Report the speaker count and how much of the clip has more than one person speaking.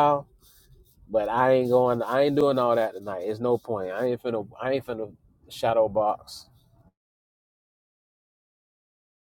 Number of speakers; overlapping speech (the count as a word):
one, no overlap